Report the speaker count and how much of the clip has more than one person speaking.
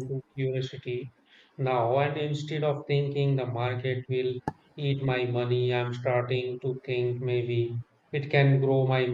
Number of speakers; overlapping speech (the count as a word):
one, no overlap